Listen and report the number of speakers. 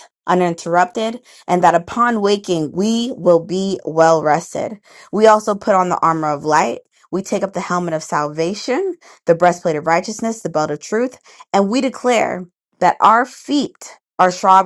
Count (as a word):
one